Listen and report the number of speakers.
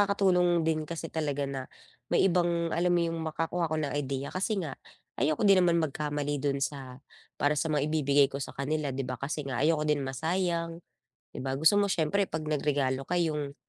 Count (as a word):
one